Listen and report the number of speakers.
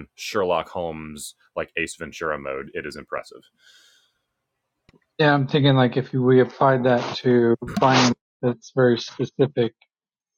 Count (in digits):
2